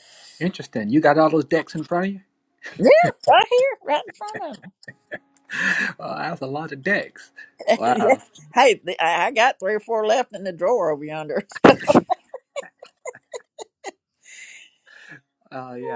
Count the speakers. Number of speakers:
two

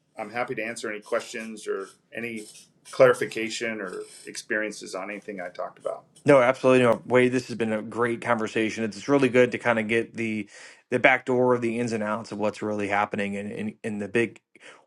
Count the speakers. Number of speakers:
two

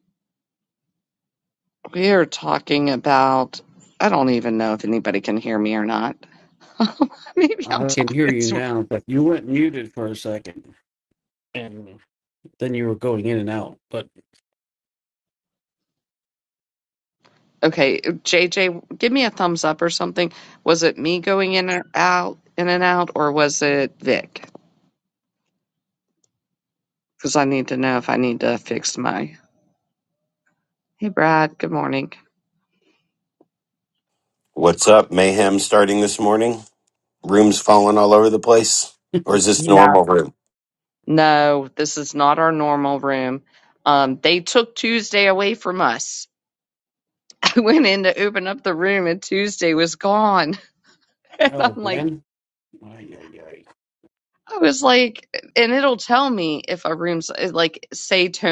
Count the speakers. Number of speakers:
three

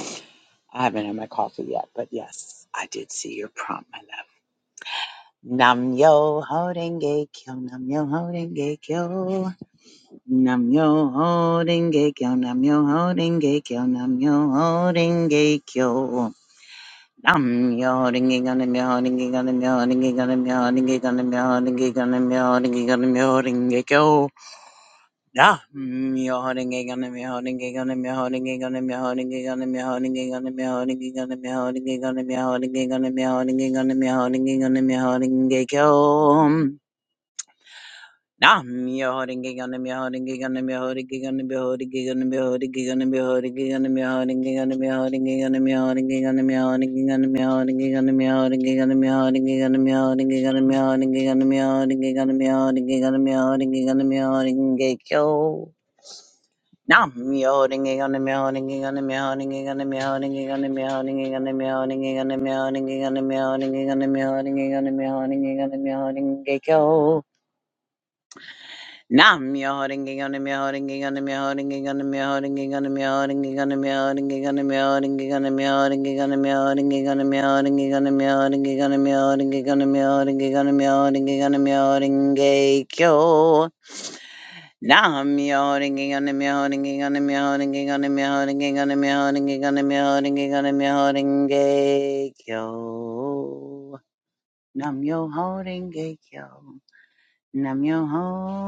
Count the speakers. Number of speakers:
one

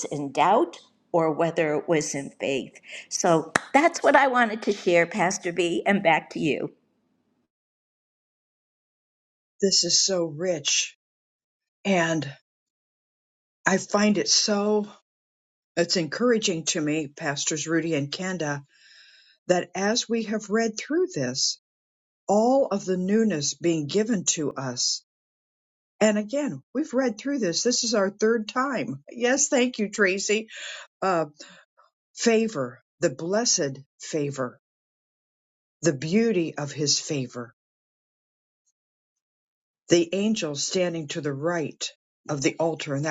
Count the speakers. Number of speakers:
two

